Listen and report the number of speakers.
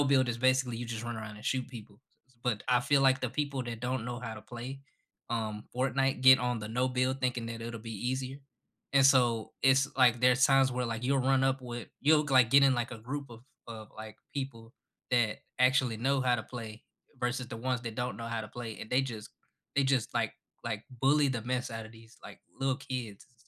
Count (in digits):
1